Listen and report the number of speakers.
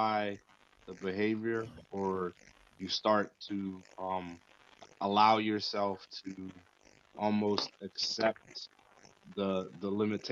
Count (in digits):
1